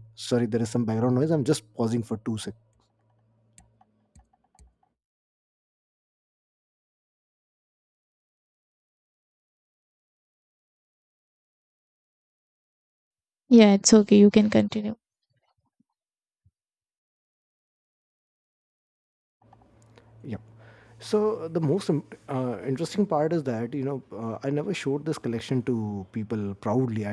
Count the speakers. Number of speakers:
2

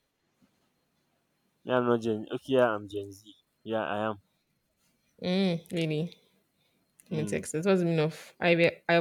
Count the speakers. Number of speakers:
2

